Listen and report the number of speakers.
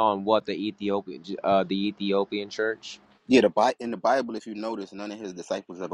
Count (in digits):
2